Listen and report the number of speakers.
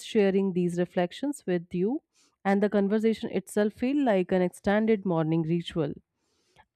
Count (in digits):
1